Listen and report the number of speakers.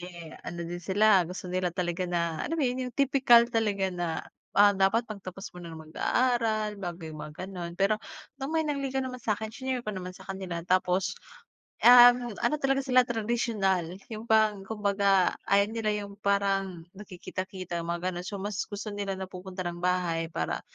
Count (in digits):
1